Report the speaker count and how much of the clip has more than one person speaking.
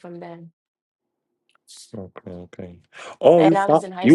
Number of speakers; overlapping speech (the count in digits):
2, about 19%